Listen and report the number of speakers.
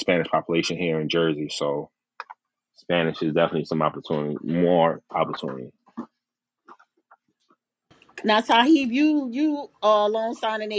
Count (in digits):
2